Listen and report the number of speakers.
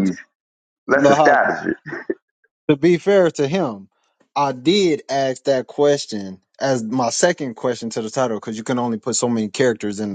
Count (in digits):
2